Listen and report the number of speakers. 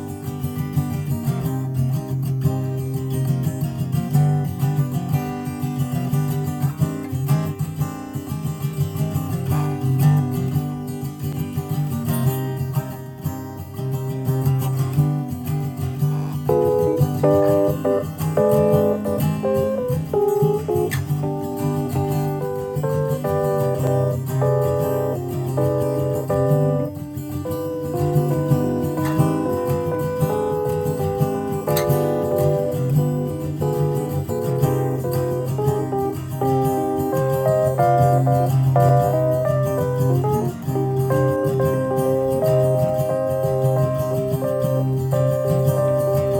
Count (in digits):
0